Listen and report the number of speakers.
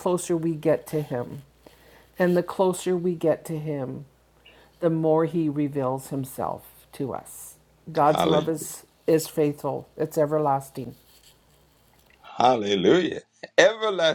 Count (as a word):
two